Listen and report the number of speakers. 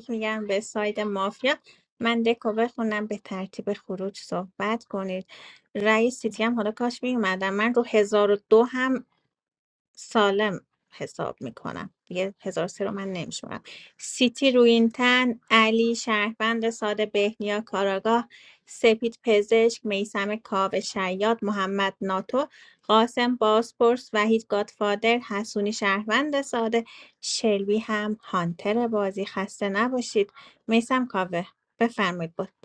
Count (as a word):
one